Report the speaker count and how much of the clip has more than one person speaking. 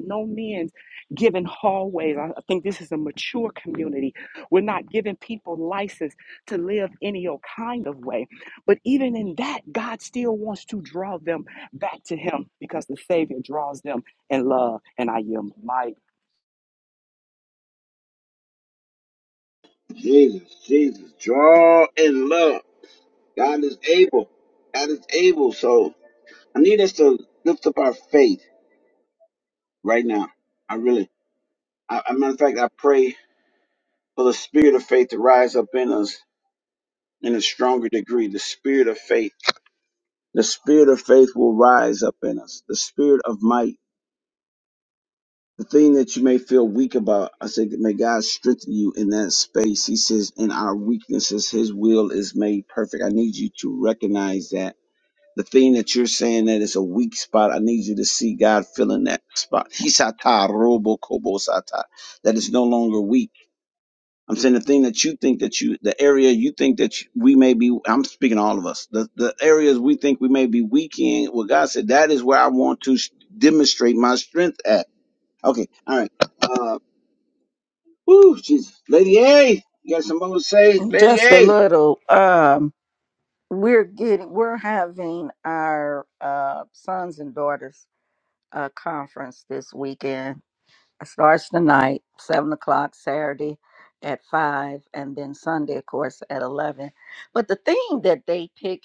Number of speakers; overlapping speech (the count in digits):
3, about 1%